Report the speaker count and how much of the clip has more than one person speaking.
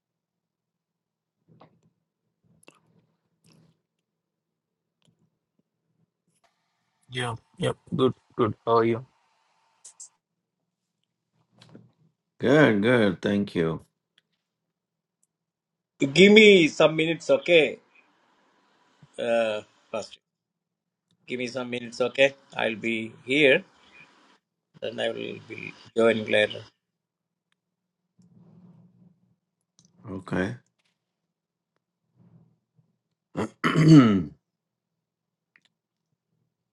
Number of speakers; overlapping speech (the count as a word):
three, no overlap